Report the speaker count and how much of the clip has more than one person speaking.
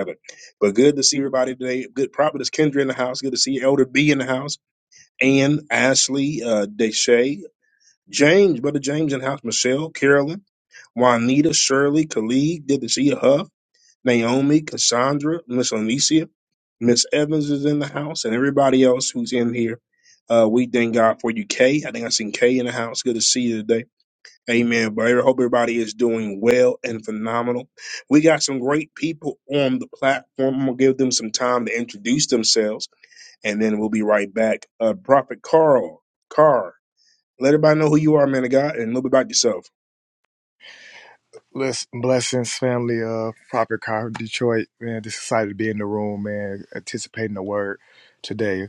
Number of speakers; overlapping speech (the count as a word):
two, no overlap